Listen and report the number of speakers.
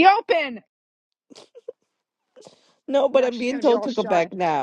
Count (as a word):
two